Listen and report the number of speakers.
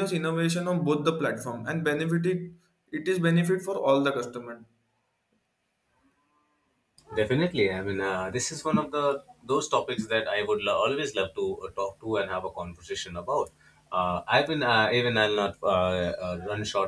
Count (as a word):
two